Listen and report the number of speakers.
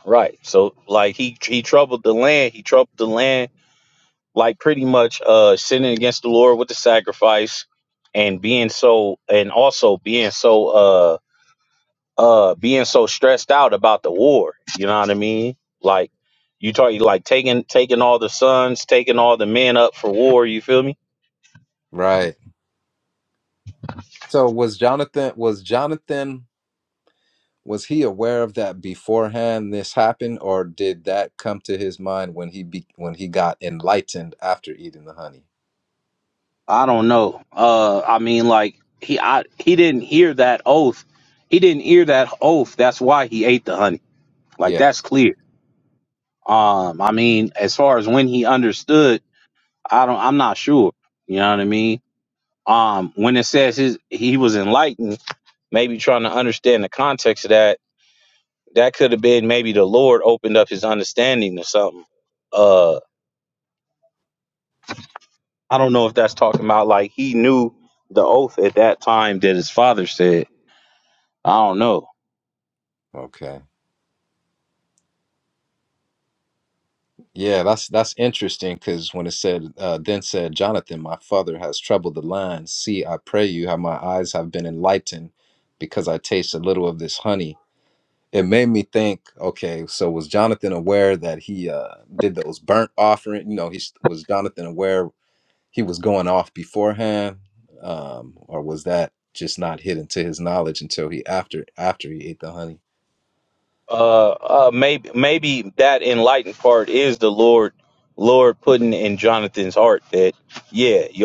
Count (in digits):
2